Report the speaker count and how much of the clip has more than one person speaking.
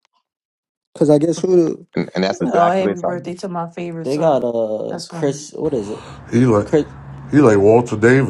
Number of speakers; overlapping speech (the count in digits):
4, about 18%